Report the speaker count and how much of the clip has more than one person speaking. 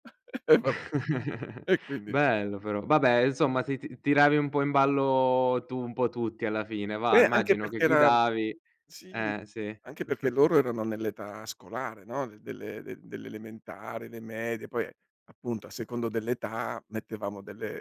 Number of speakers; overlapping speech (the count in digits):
2, about 7%